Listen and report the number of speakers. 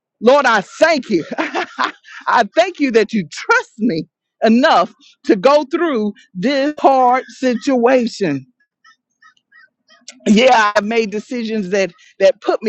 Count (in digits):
1